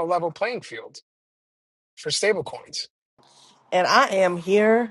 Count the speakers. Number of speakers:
two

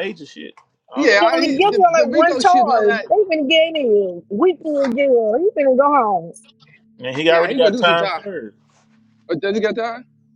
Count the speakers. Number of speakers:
three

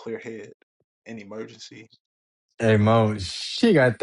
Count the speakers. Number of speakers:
two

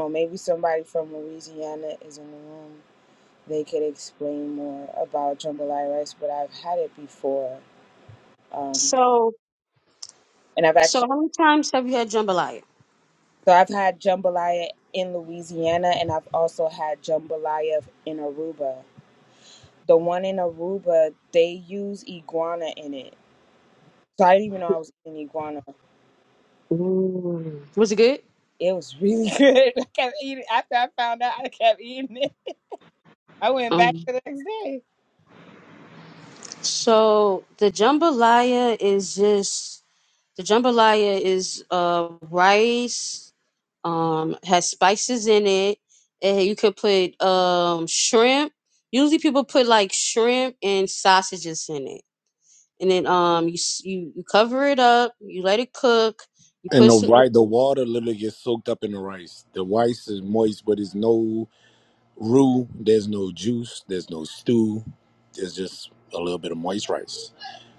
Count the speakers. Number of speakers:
three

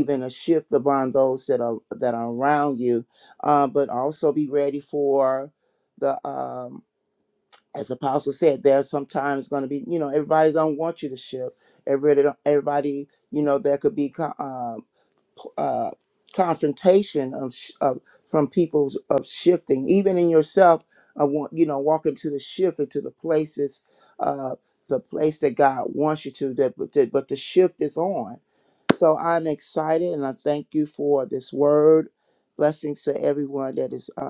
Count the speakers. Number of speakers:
one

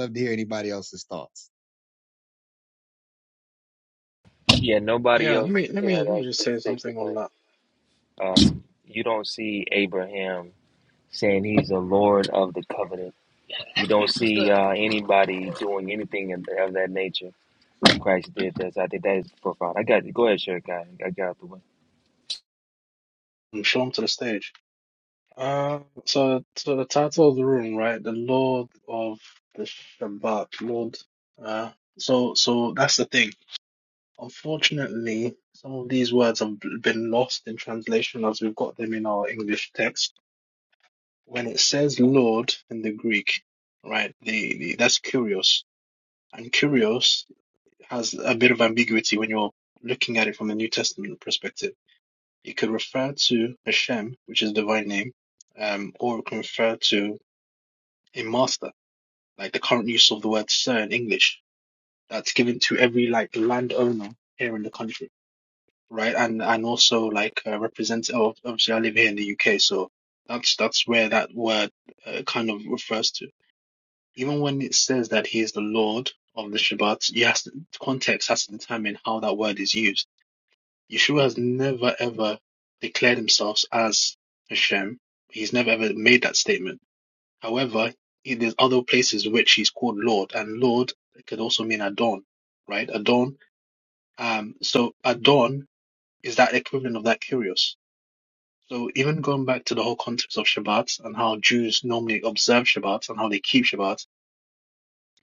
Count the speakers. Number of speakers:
three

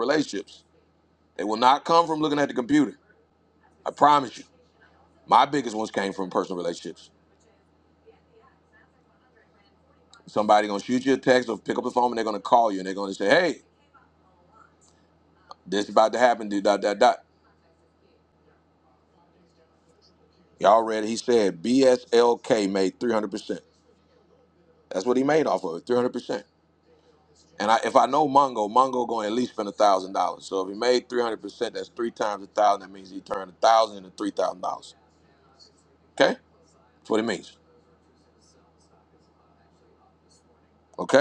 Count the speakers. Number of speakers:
one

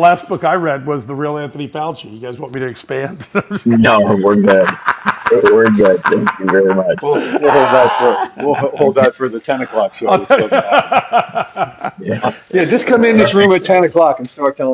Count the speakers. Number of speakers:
three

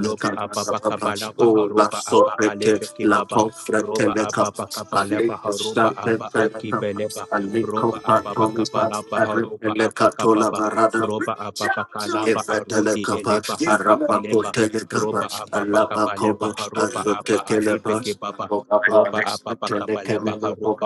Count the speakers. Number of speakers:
two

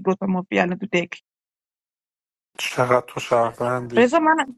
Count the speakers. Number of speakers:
two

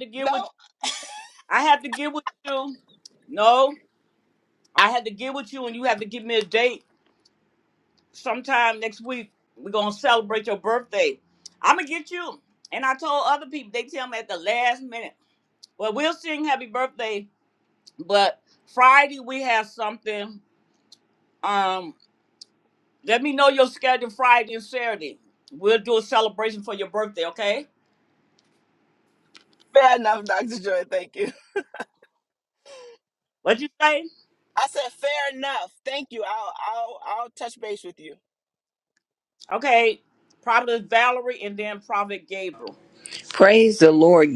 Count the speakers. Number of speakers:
three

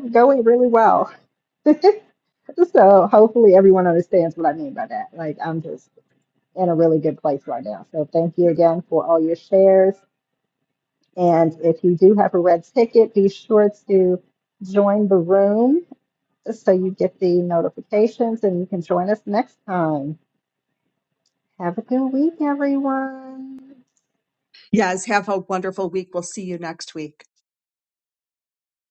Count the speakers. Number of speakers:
two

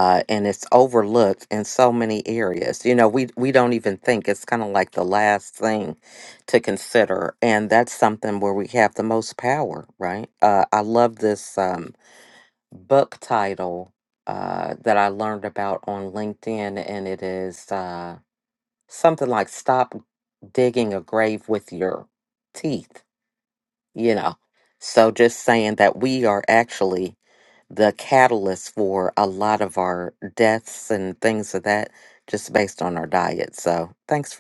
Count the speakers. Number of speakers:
one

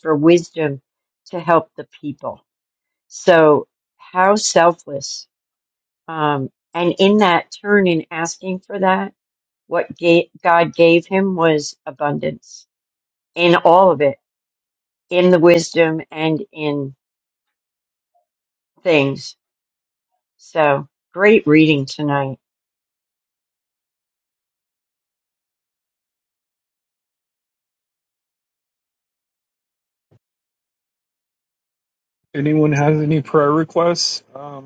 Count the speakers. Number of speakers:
two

